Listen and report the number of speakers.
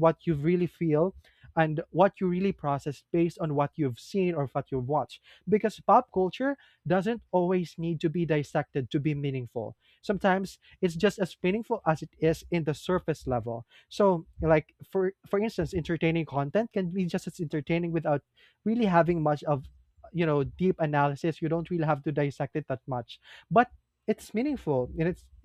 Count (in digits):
1